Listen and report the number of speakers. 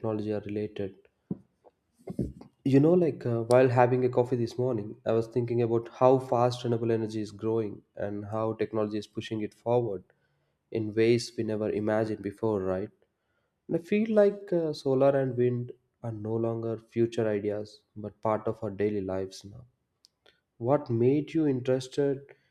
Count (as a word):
one